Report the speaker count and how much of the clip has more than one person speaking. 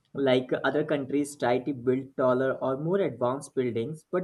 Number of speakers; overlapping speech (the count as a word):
one, no overlap